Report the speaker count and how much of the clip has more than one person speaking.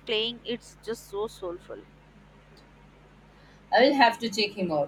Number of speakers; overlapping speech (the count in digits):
2, no overlap